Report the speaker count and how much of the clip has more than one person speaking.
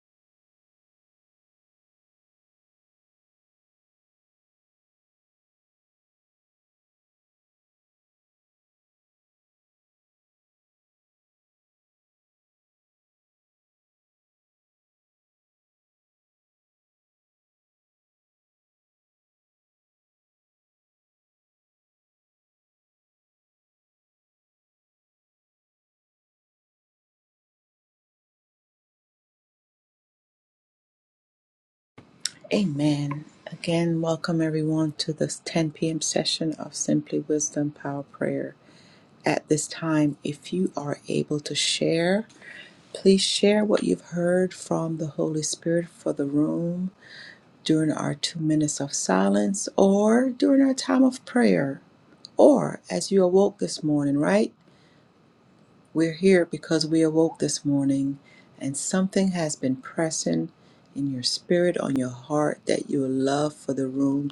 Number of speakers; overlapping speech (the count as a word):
one, no overlap